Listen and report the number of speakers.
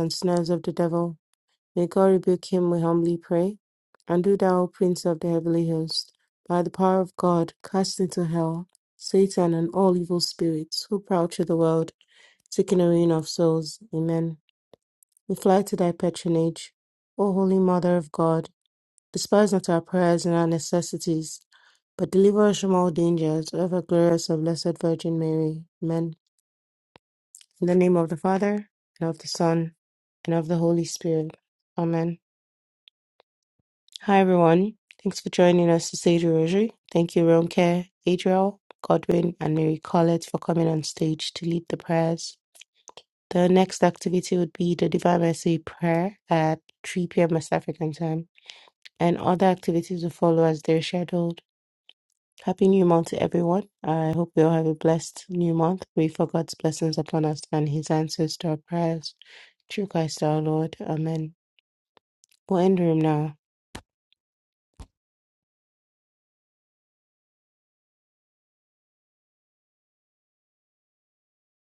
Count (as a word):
one